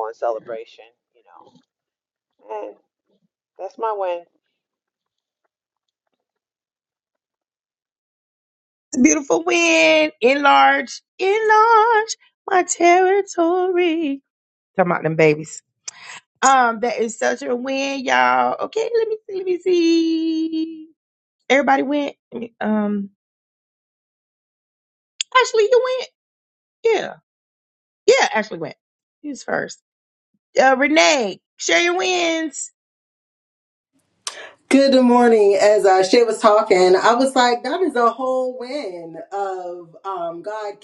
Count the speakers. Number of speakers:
3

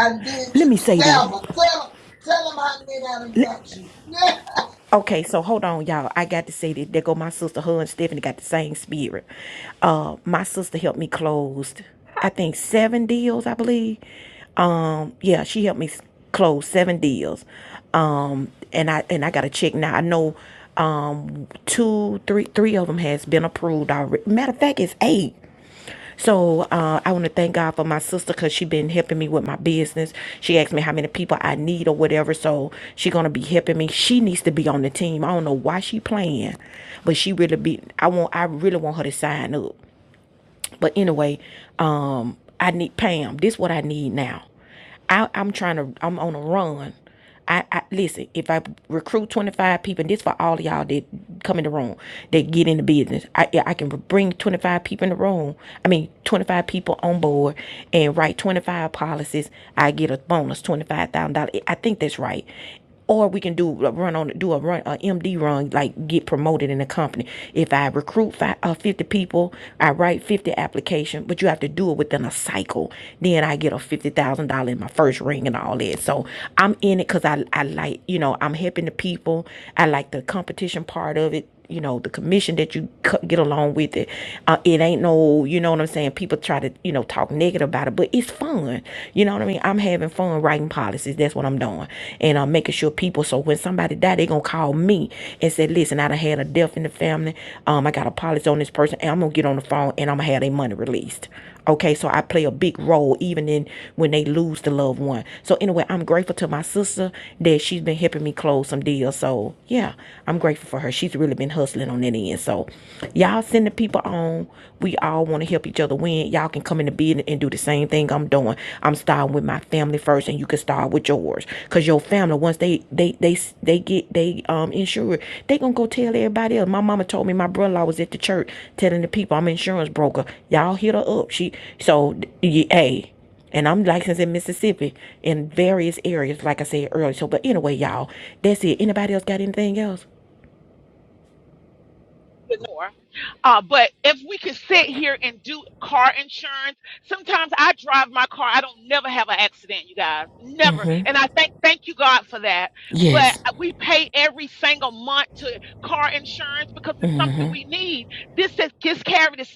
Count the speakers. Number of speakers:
3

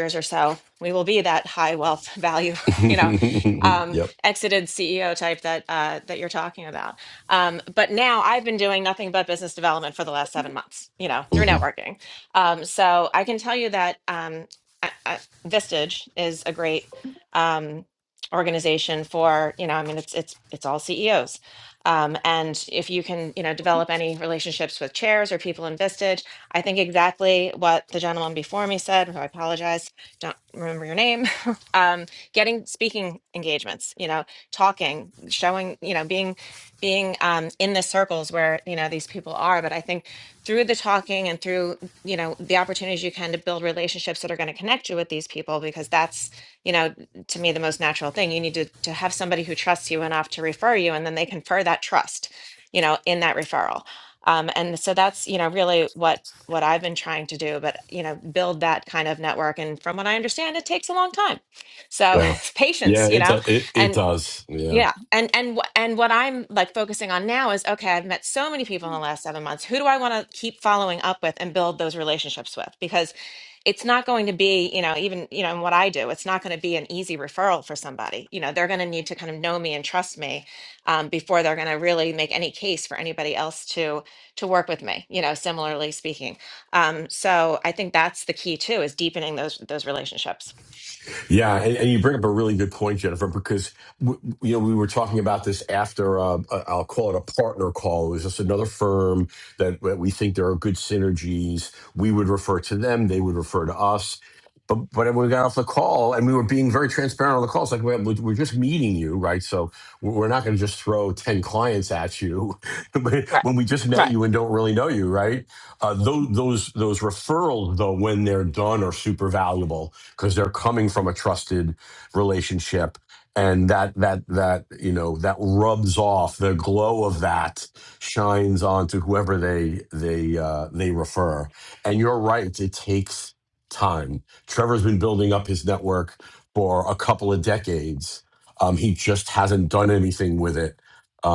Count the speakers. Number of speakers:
2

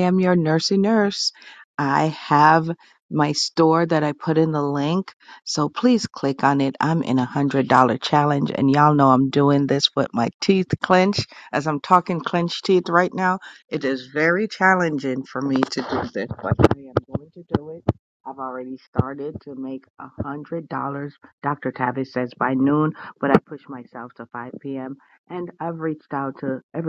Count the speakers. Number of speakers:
1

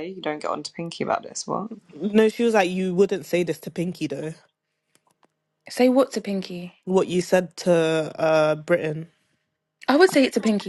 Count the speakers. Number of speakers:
3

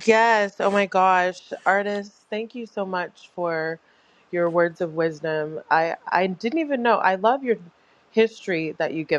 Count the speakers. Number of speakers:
1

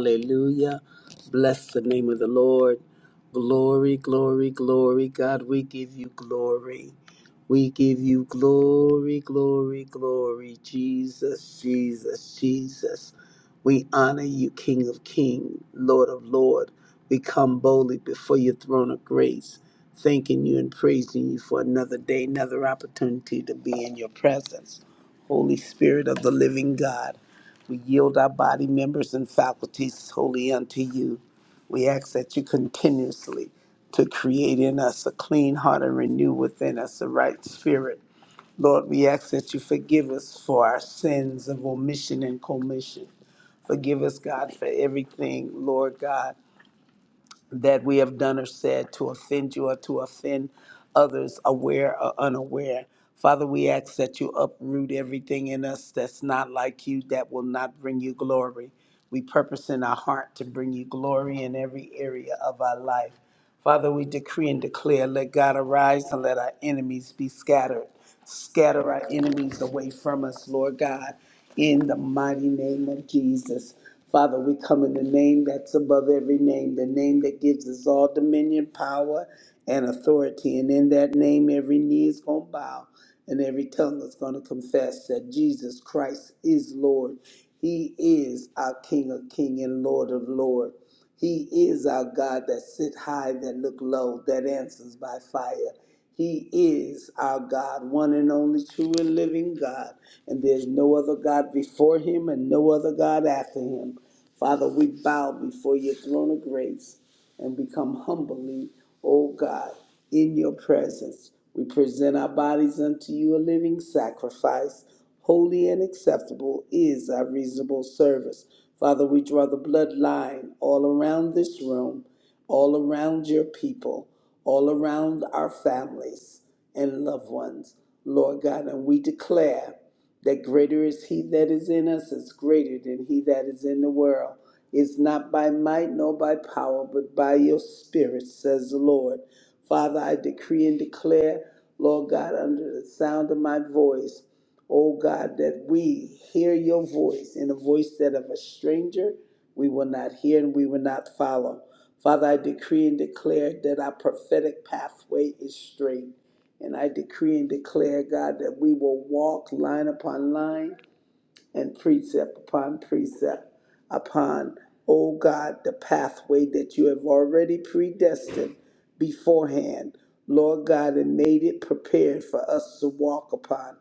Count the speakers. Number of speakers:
1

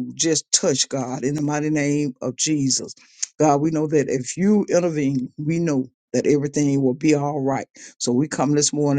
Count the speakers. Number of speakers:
1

